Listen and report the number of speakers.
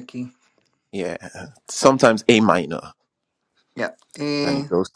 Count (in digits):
2